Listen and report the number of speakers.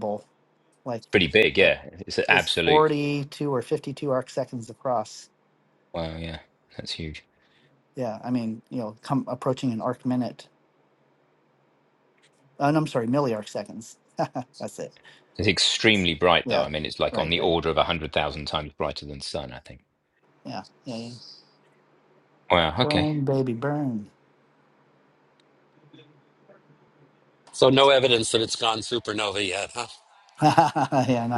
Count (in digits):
3